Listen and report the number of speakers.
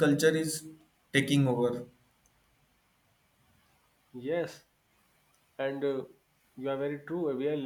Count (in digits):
2